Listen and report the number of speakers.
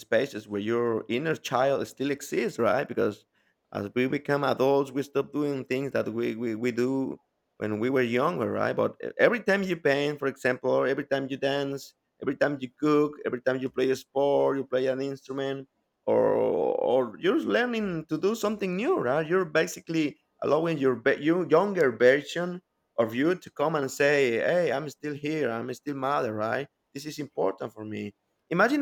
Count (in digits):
1